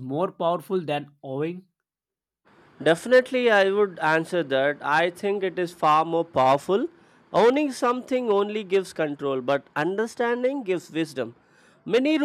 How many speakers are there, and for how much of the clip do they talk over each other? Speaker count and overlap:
2, no overlap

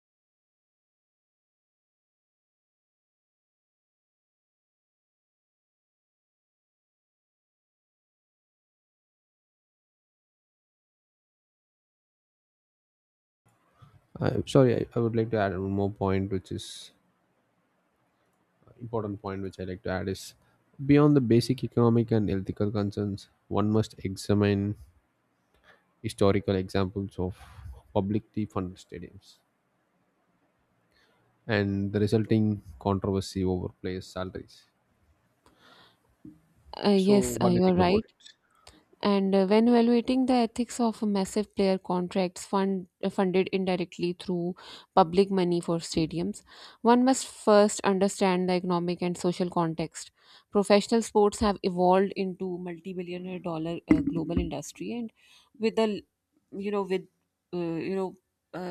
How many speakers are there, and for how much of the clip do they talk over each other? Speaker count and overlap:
2, about 2%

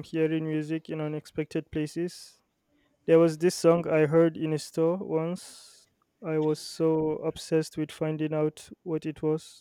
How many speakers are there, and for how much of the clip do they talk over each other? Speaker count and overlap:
1, no overlap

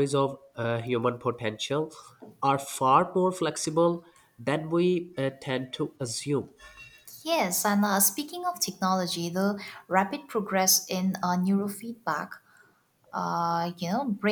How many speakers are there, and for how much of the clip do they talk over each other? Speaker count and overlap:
2, no overlap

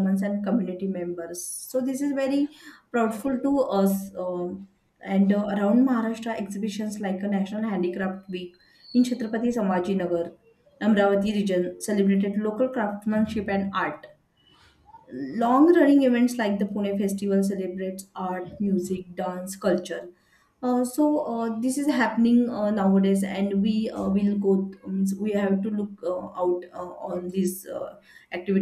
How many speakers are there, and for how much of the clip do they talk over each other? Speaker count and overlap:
1, no overlap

